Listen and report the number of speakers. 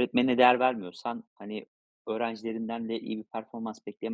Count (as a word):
one